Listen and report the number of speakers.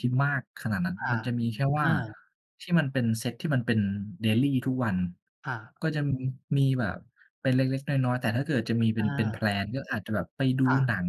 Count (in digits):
2